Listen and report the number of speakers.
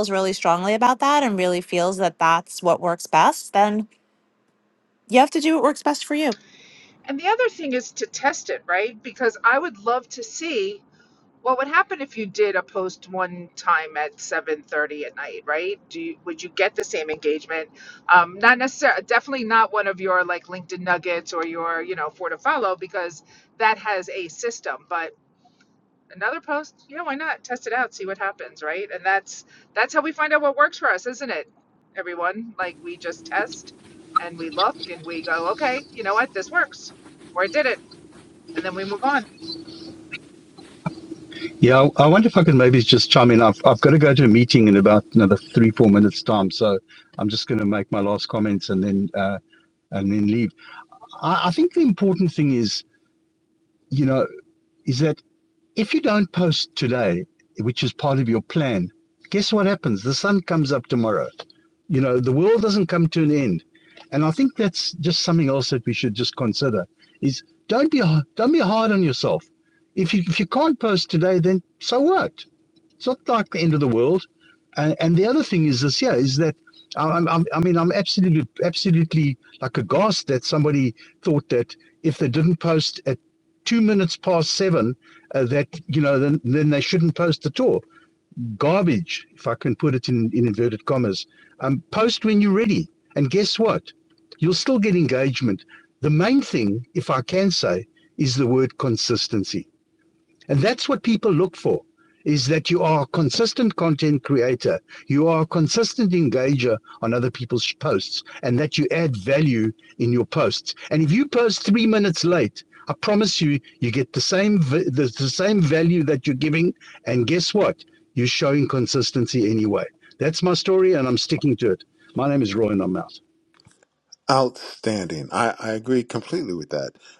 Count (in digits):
4